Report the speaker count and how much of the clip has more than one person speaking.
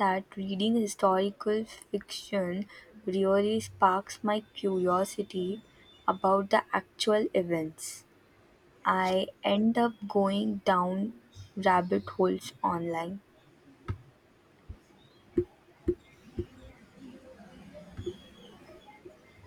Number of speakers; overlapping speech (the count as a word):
one, no overlap